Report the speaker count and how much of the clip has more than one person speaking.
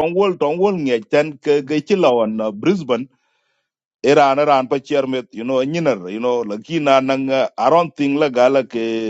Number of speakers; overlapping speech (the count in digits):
1, no overlap